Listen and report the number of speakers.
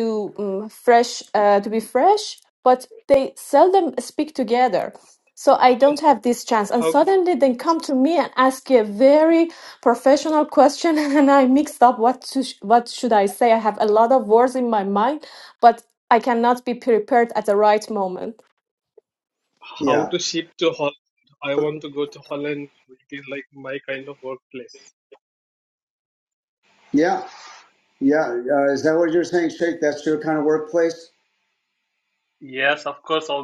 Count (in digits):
3